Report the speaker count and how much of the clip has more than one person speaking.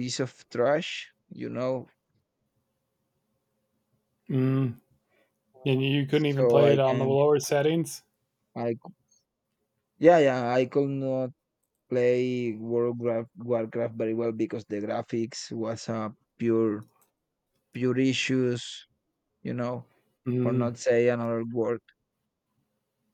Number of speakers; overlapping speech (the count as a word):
two, about 5%